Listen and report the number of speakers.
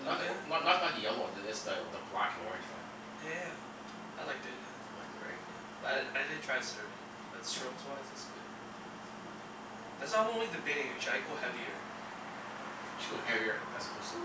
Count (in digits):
2